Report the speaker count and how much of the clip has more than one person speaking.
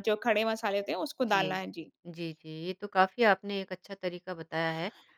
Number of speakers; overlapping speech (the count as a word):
two, about 4%